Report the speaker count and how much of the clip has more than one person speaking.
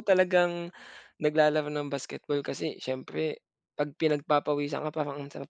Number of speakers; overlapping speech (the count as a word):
one, no overlap